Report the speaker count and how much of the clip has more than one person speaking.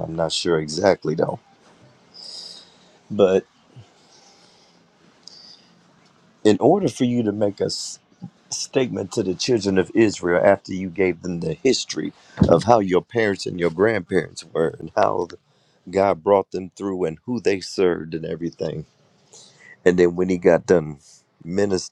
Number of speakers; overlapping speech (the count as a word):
one, no overlap